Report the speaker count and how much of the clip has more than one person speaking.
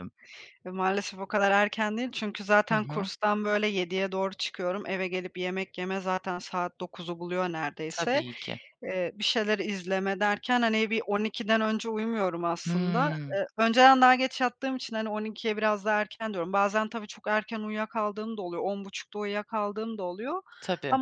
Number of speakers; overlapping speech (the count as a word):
two, about 7%